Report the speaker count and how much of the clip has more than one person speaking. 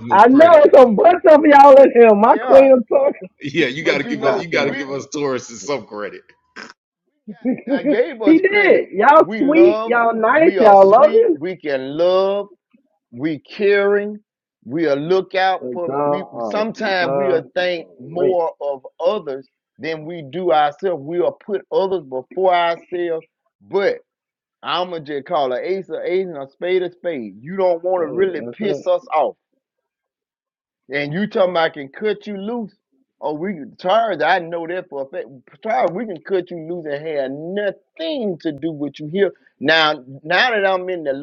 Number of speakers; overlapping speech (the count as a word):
three, about 18%